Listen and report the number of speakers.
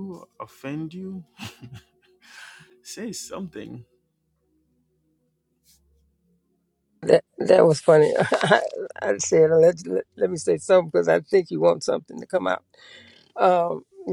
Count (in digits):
2